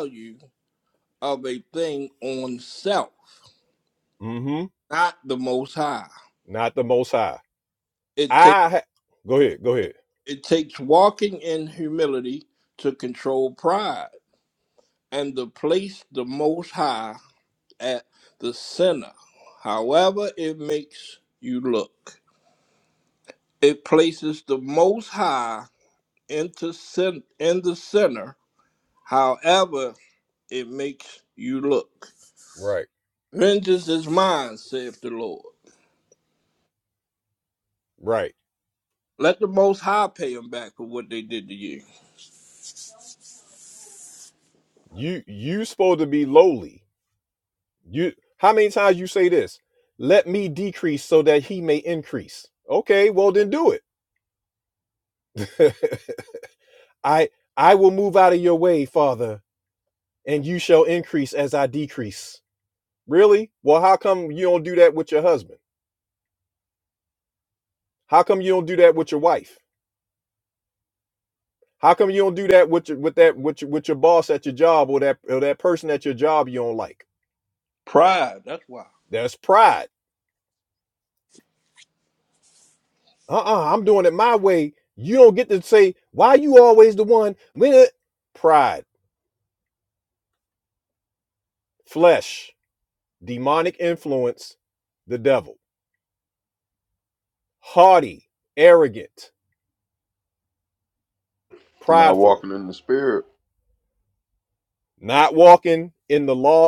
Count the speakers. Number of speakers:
3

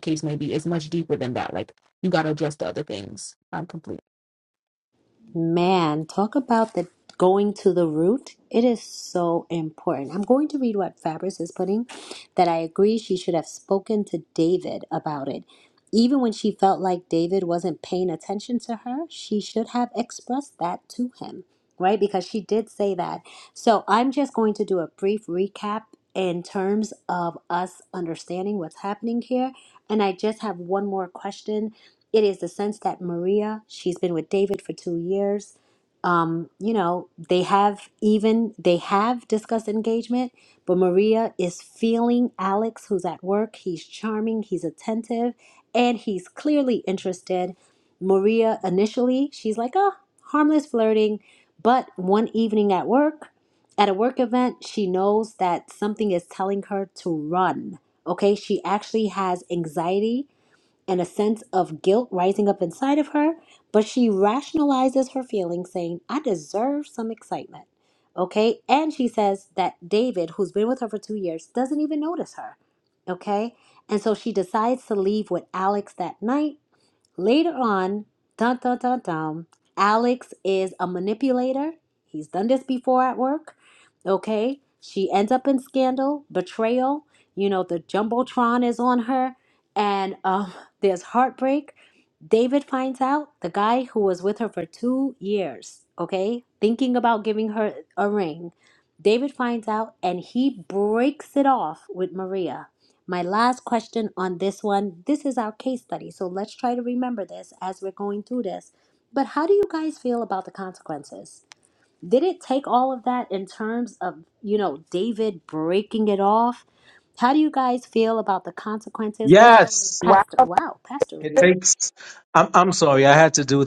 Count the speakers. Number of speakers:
3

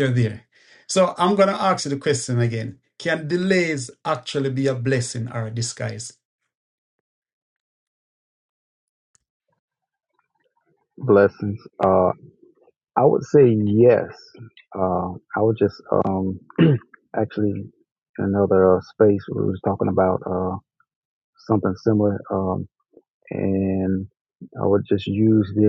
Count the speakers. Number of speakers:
2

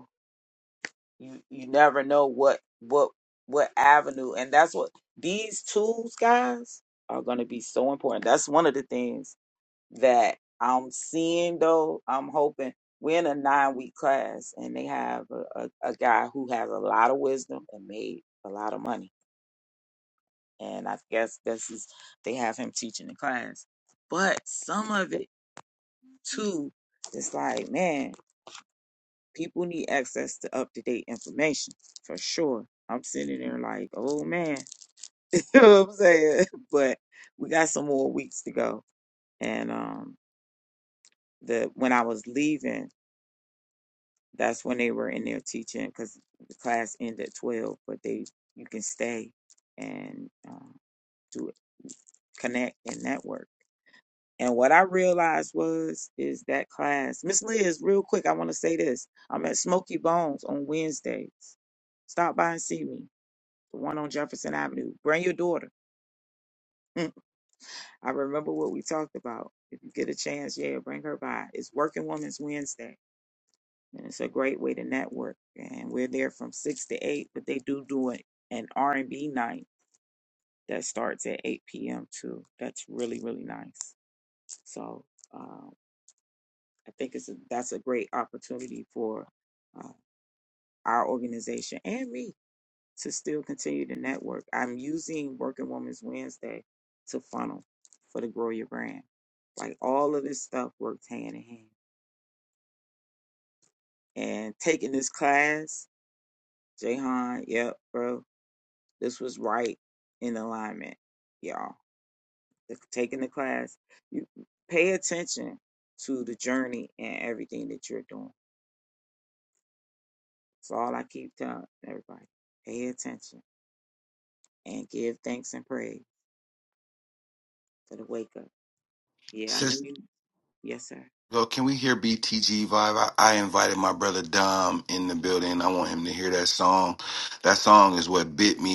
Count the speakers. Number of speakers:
2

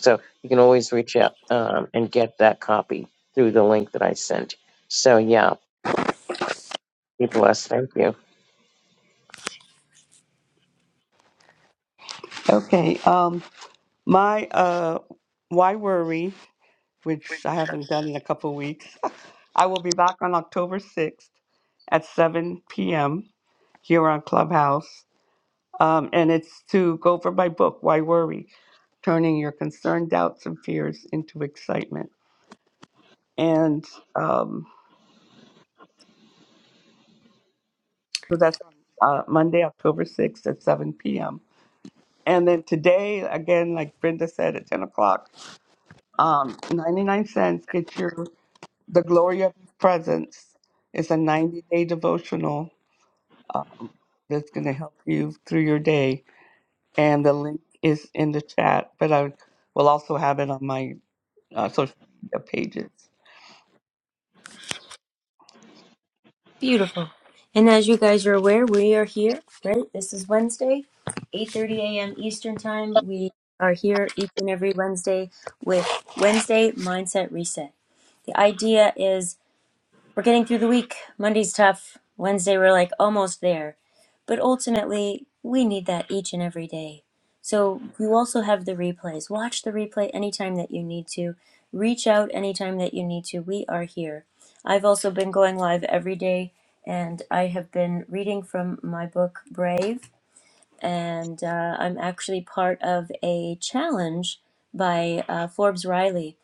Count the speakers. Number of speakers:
3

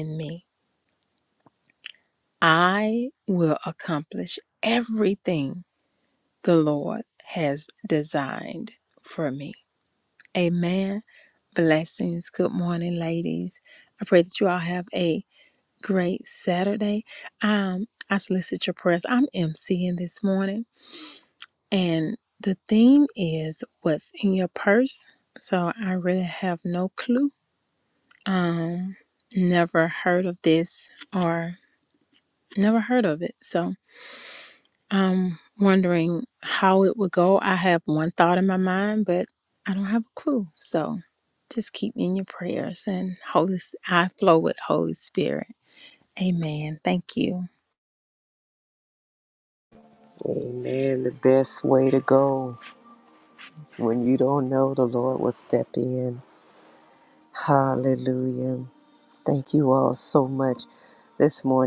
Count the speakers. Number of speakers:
2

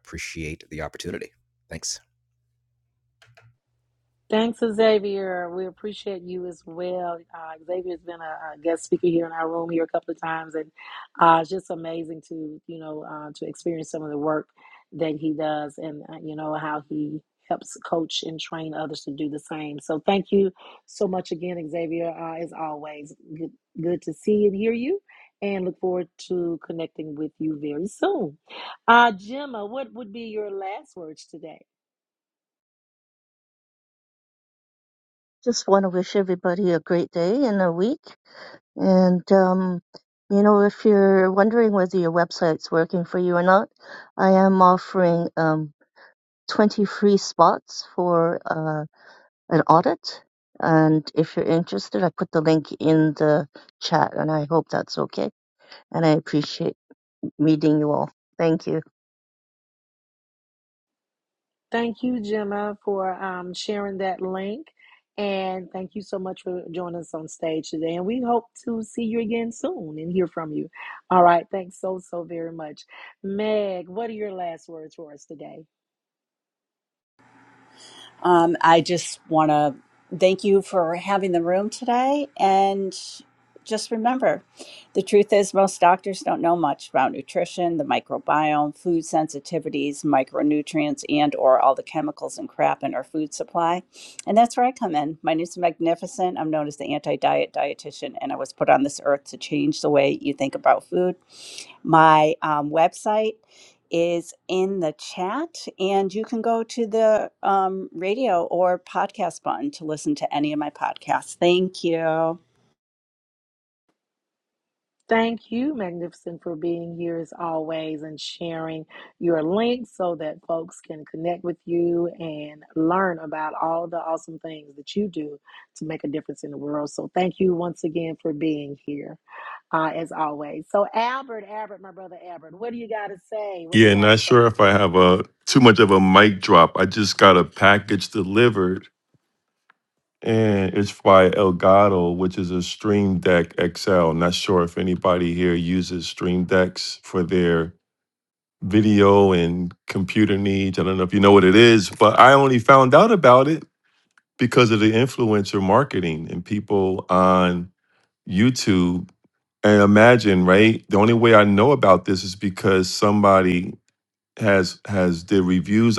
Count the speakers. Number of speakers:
5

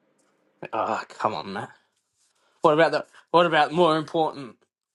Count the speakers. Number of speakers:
1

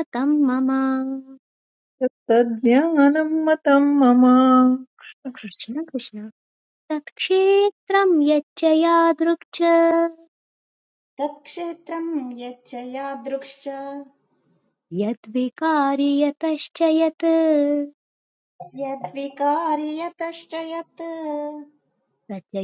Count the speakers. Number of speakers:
3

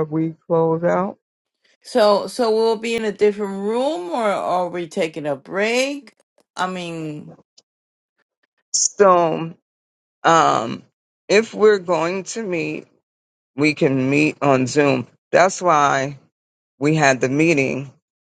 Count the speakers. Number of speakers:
2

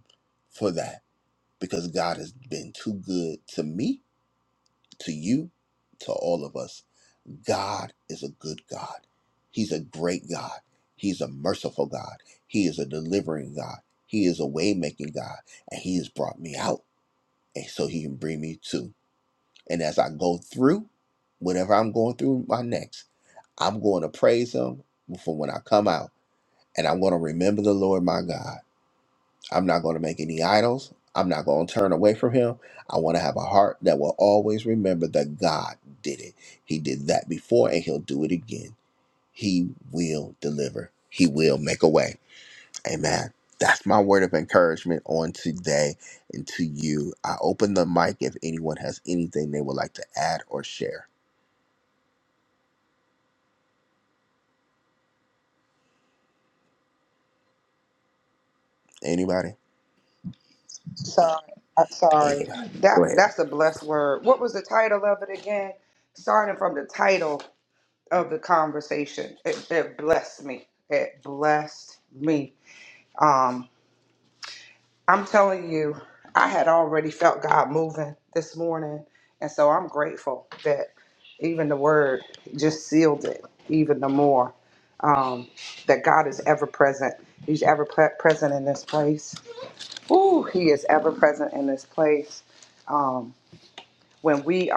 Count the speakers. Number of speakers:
2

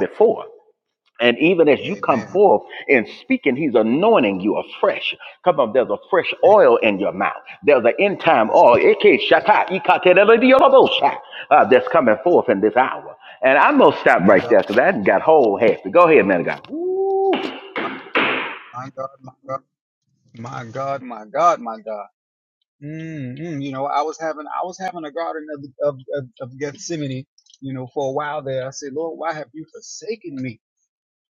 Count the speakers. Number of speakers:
2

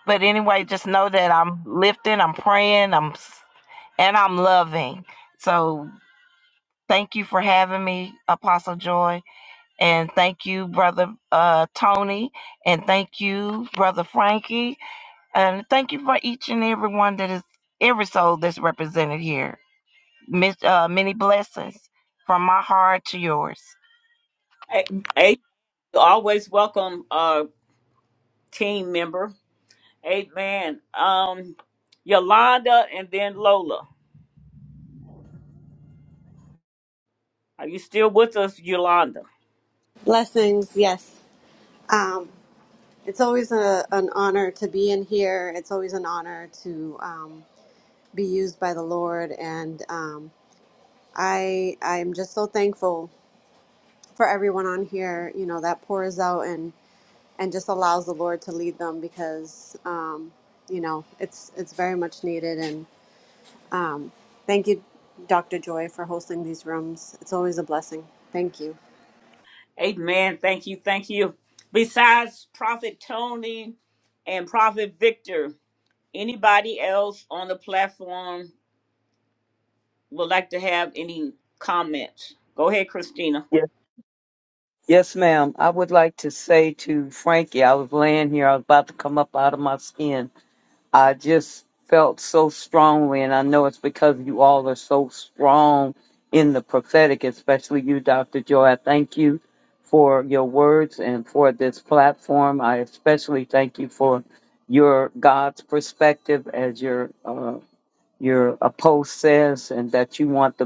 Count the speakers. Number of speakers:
4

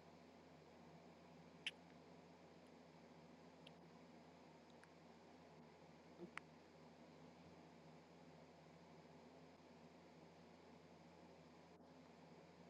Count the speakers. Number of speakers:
0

